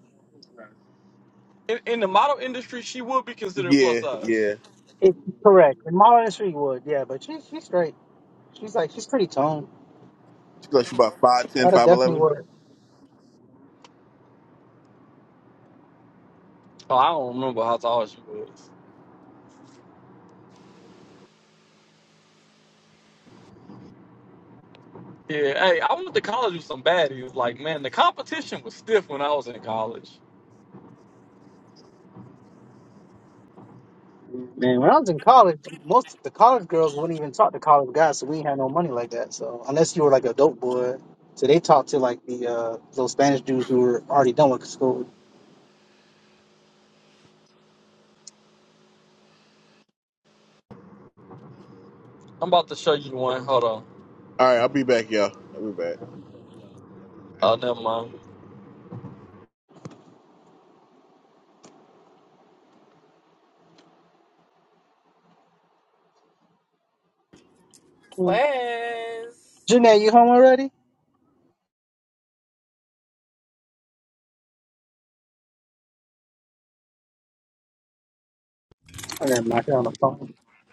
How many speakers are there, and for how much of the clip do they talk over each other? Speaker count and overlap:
4, about 2%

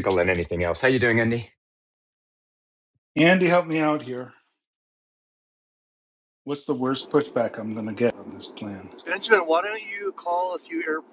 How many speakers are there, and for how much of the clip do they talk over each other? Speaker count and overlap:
3, no overlap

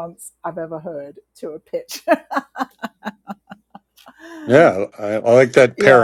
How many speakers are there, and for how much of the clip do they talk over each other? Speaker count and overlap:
2, about 5%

